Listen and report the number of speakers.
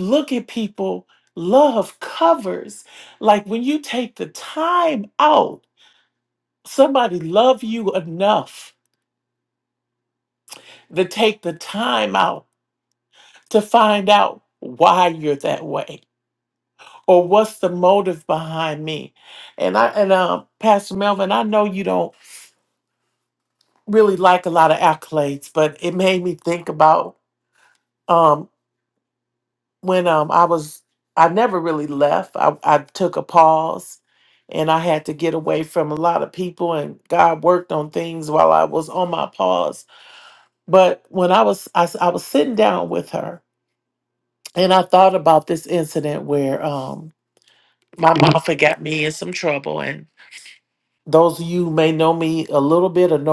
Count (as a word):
one